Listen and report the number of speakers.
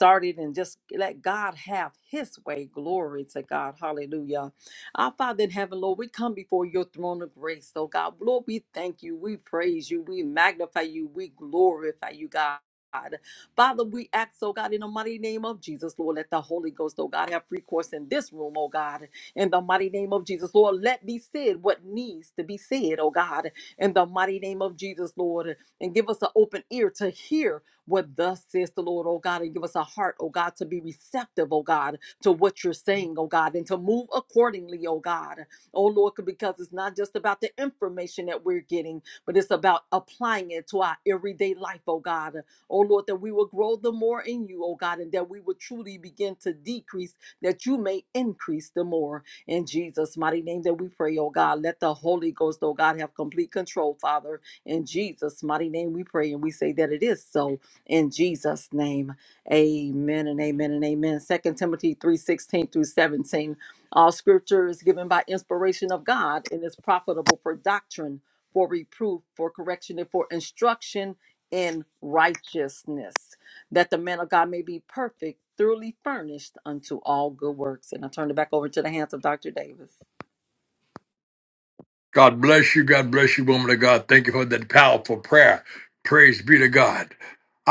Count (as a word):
two